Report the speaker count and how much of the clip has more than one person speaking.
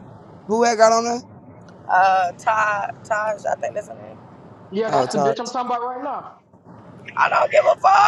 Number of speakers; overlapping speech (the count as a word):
three, about 6%